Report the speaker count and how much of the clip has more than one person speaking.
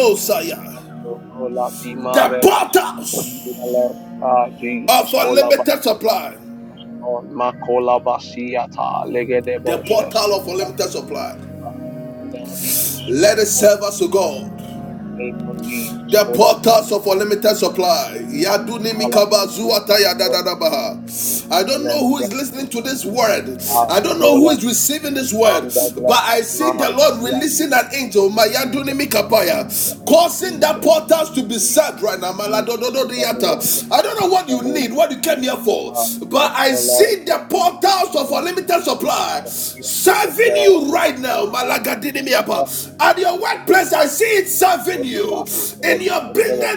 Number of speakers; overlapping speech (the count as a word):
two, about 23%